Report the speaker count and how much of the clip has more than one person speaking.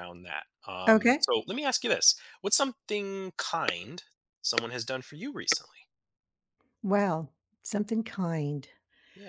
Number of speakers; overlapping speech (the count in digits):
2, about 4%